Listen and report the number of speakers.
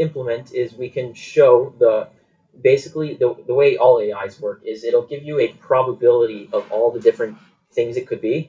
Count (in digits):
1